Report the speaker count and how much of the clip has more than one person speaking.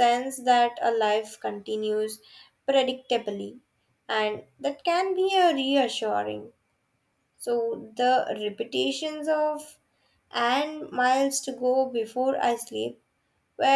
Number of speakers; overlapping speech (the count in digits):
1, no overlap